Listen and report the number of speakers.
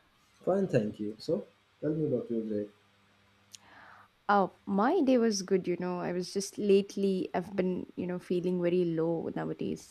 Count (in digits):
2